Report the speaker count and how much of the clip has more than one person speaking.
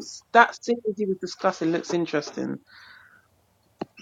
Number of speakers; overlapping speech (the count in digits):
1, no overlap